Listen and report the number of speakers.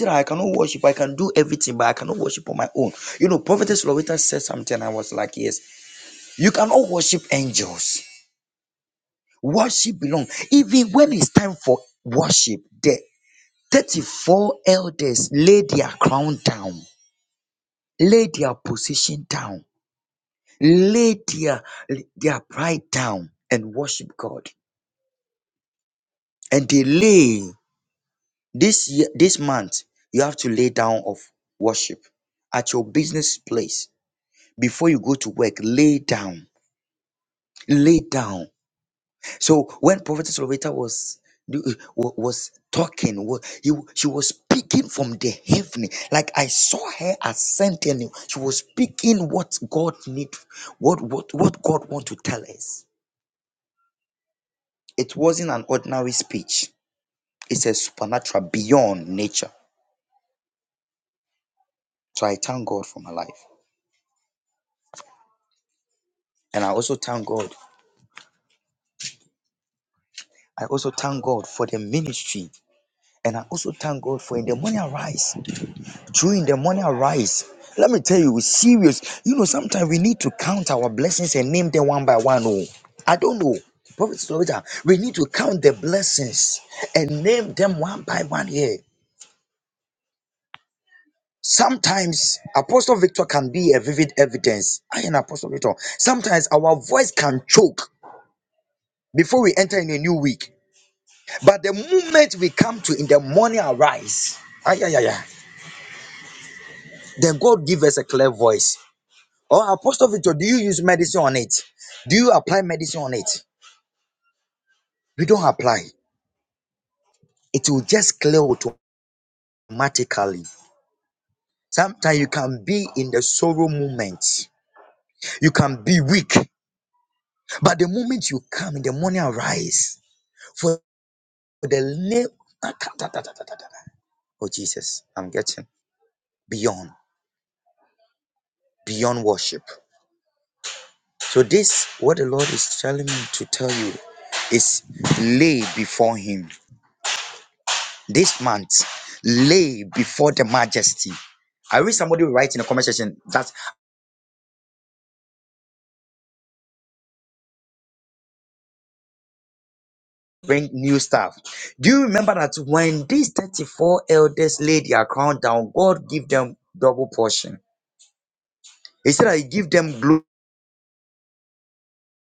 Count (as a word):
one